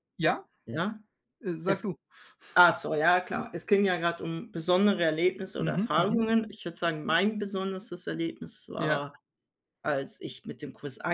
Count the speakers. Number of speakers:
2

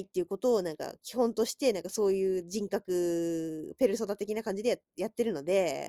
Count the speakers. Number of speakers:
1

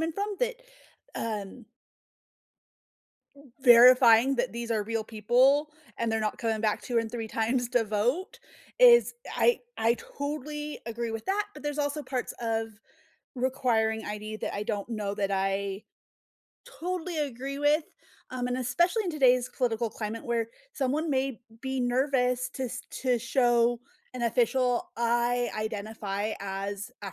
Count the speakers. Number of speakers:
1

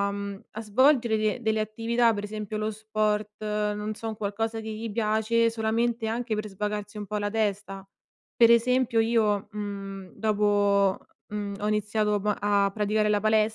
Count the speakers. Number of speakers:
1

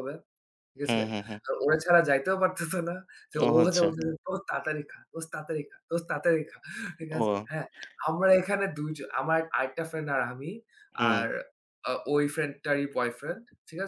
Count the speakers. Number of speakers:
2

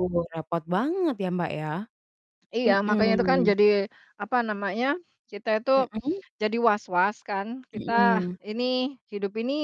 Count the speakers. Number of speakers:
2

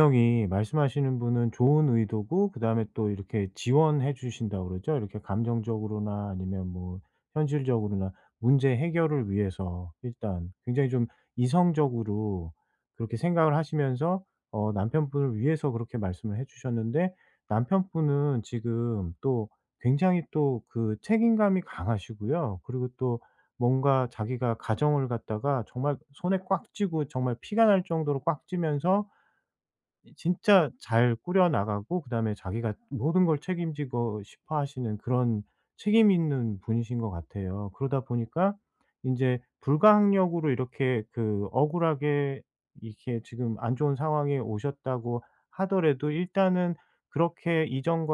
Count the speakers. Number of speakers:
1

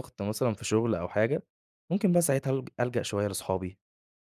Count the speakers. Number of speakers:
1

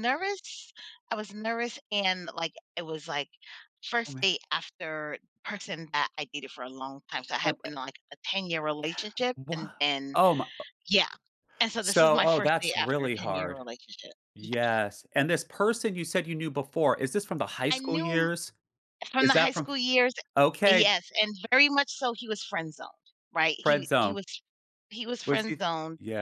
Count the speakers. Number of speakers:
2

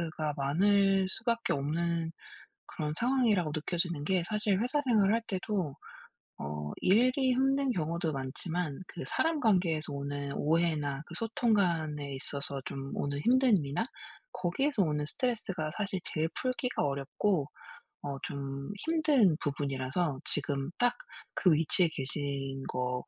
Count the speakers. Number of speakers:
1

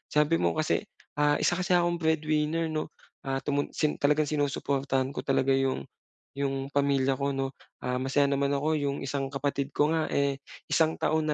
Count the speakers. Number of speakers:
1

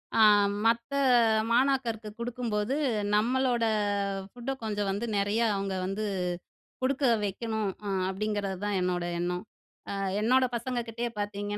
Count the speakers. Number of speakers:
1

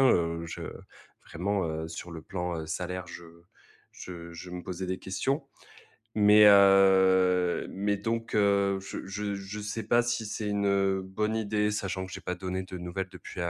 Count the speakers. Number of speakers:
1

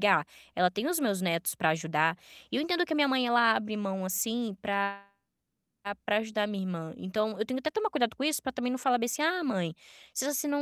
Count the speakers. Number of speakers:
1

